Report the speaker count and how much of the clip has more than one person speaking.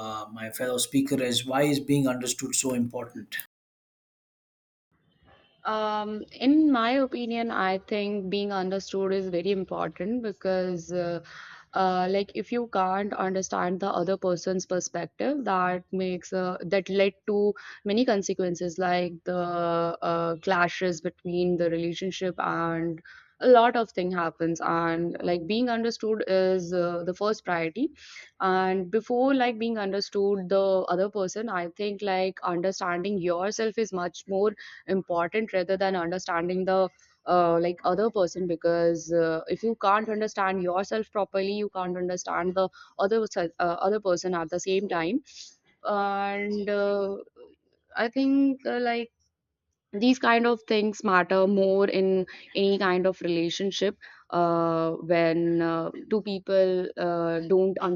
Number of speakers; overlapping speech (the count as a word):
two, no overlap